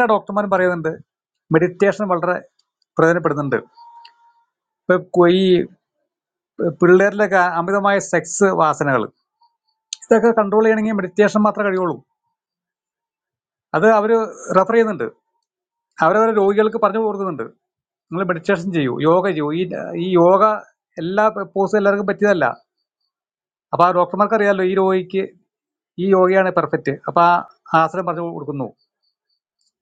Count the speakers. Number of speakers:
one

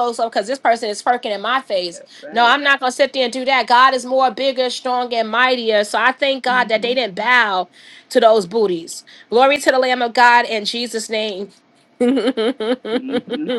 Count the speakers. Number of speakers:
two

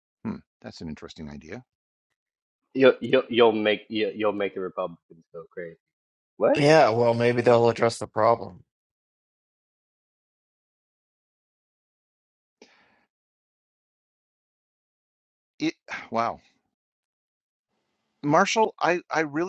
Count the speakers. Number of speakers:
three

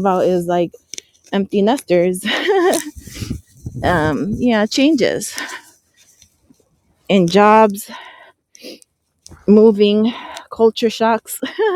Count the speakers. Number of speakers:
one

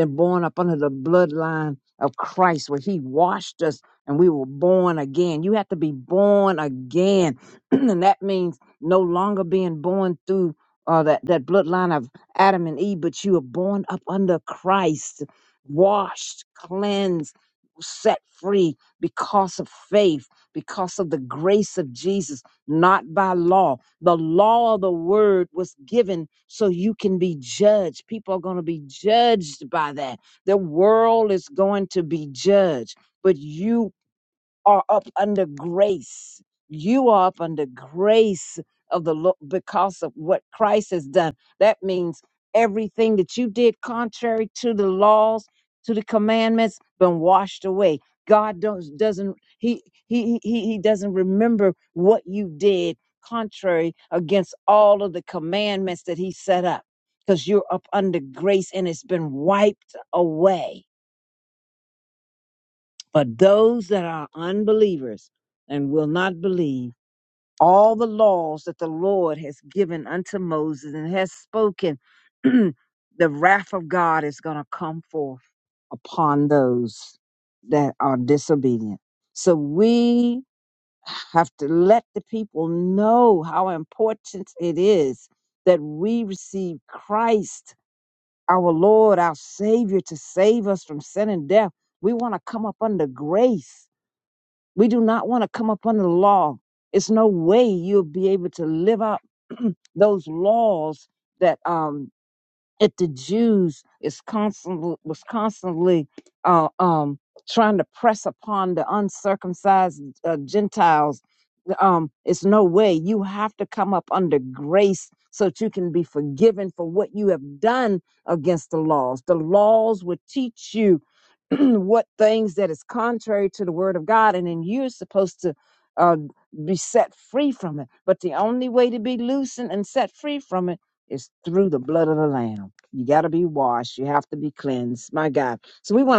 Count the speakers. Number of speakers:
one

